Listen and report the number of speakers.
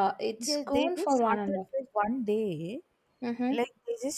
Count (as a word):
two